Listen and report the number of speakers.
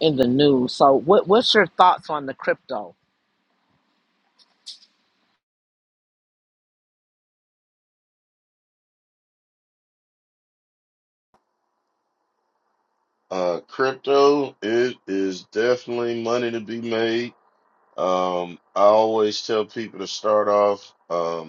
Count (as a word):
two